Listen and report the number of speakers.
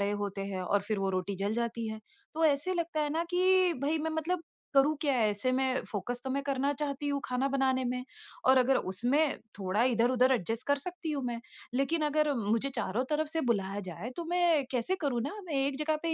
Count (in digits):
1